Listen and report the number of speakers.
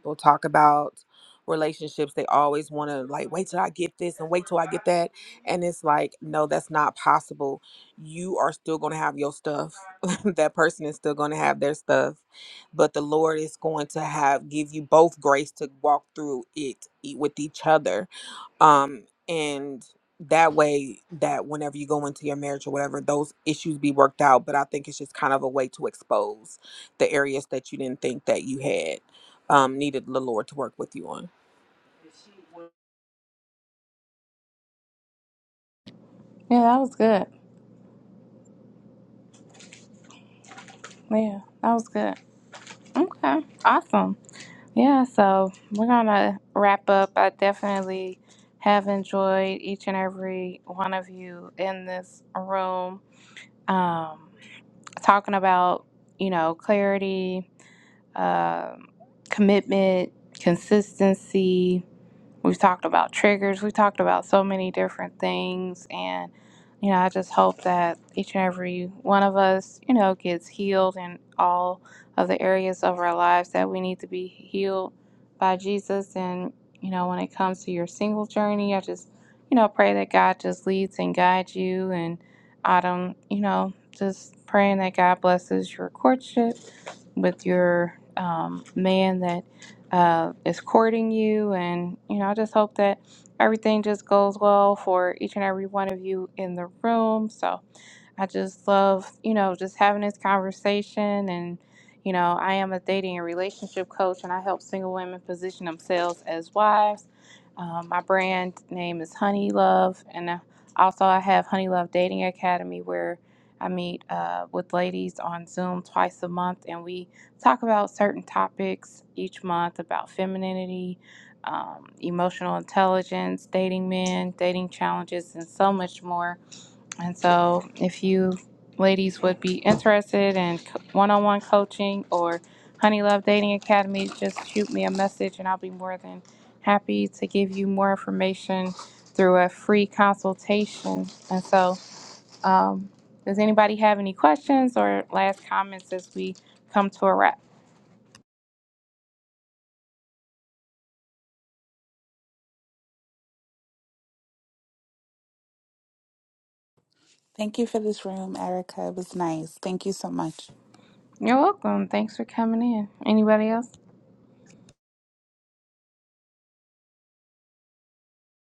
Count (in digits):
3